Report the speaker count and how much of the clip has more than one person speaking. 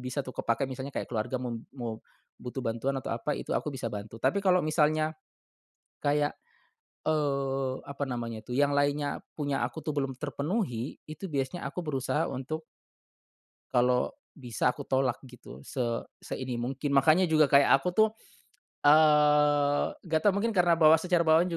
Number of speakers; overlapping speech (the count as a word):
one, no overlap